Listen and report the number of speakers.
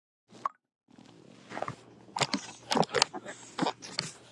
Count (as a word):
zero